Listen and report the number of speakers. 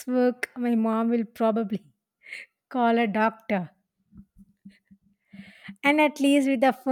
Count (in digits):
1